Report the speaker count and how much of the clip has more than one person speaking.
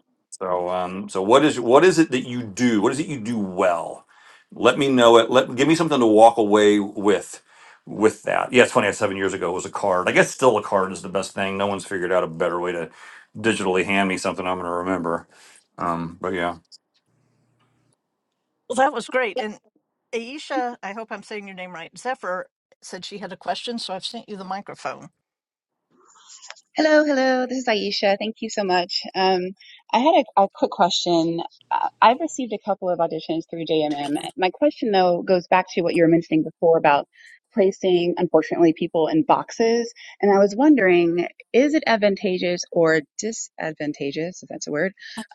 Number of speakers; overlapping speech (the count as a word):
three, no overlap